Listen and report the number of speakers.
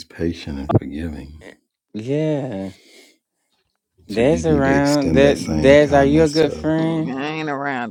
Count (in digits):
3